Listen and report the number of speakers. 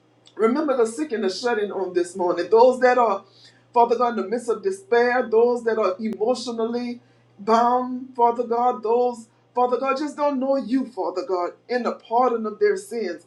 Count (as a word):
one